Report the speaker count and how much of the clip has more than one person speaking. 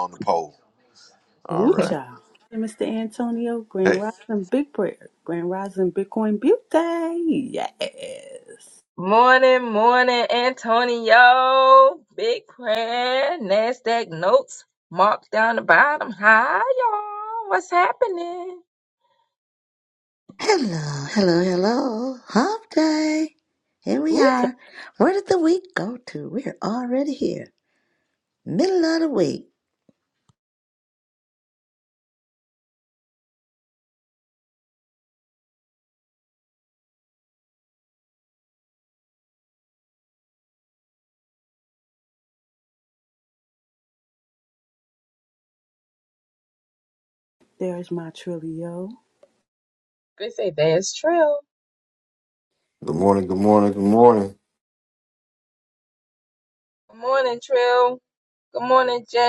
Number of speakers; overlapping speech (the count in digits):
5, about 2%